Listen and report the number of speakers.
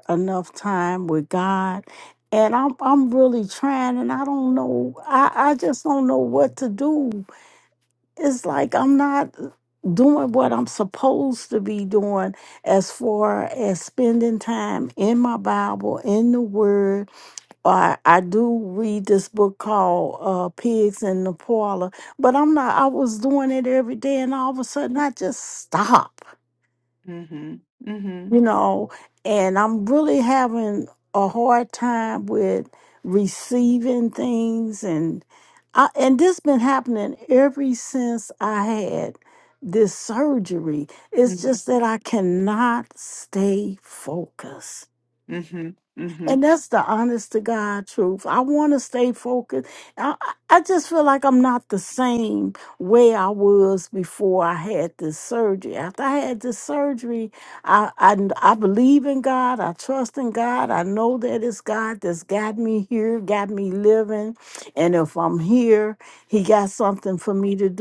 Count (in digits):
2